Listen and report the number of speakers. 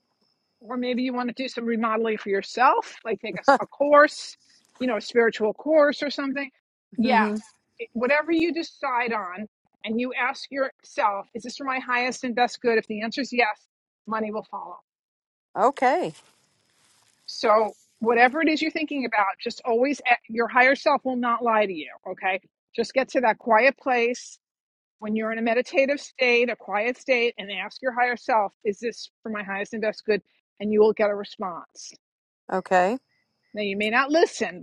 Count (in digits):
2